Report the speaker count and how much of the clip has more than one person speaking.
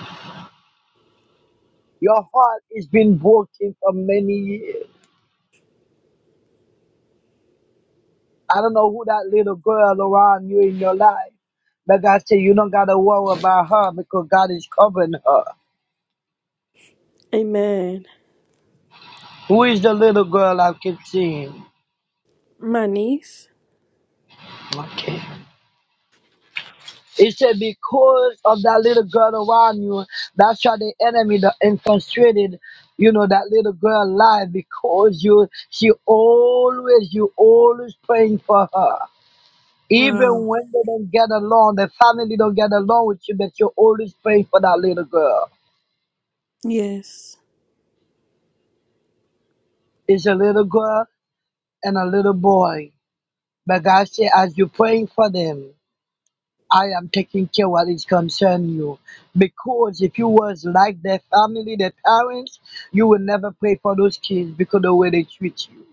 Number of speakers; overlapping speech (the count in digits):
2, about 1%